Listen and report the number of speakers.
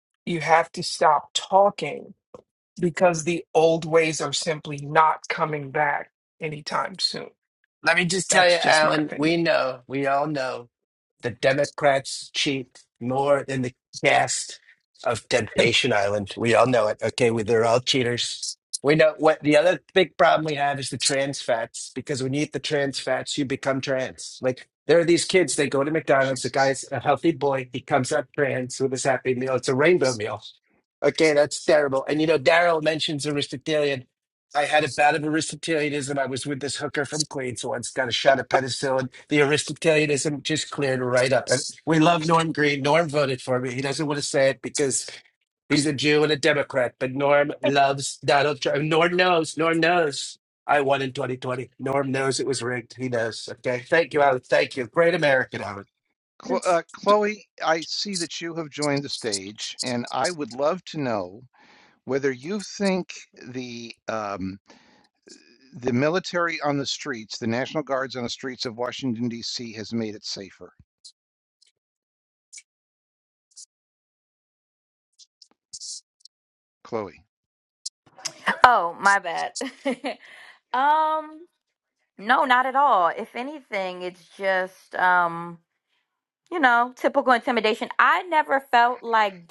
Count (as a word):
four